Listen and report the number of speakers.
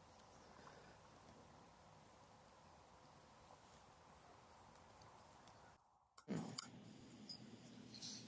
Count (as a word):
zero